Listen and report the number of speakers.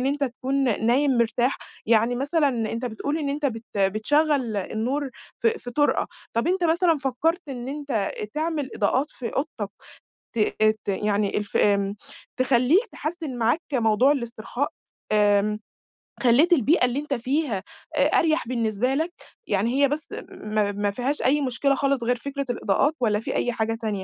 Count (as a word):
one